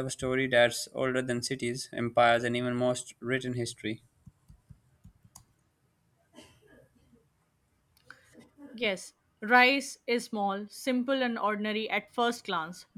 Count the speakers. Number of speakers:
2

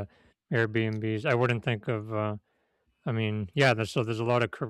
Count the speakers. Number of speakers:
1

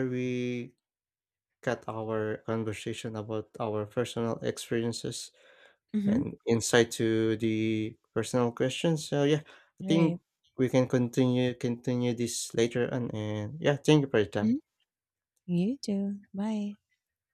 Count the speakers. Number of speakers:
2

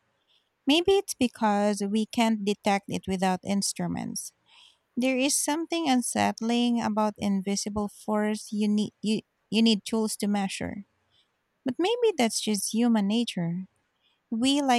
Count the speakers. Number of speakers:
1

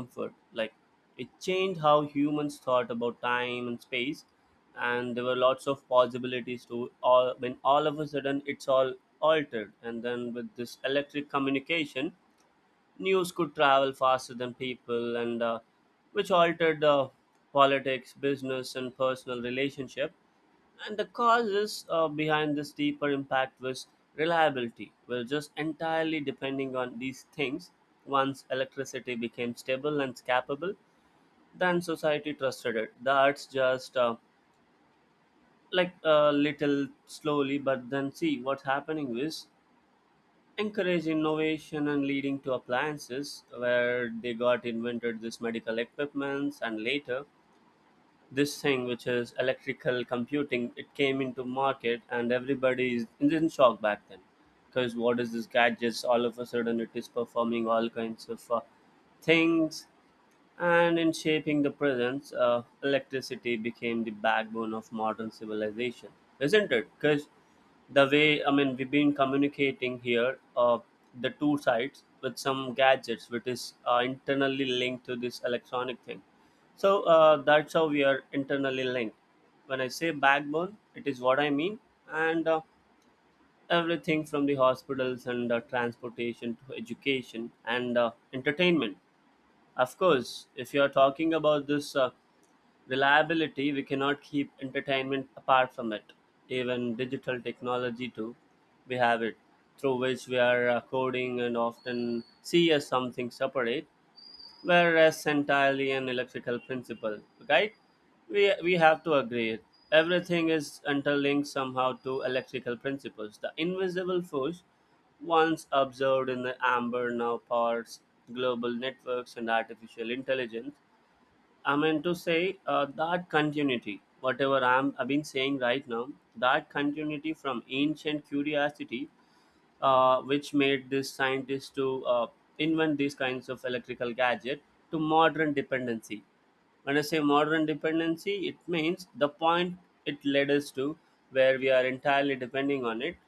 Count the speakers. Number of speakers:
1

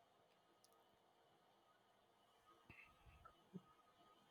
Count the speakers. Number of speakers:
0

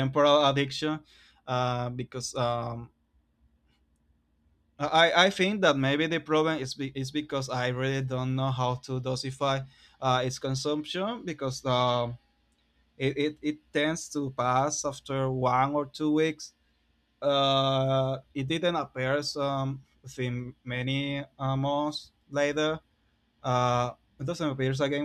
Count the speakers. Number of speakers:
1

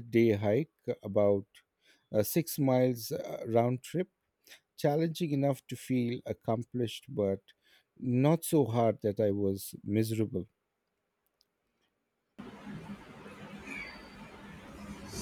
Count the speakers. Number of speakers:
1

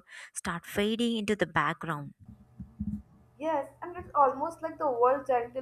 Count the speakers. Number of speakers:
2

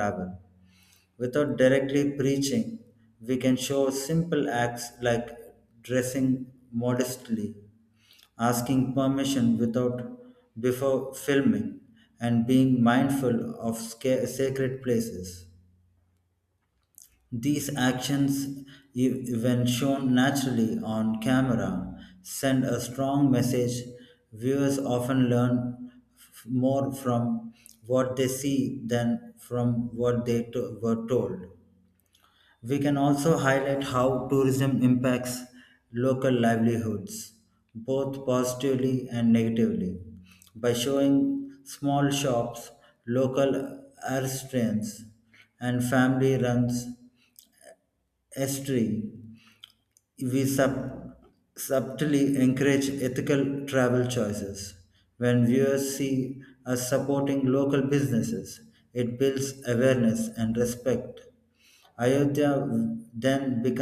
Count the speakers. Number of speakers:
1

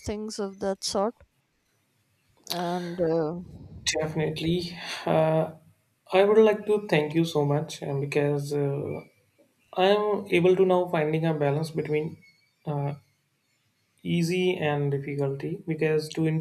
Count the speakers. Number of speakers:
2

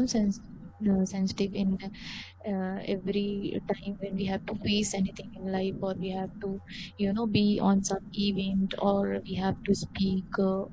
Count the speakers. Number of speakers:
1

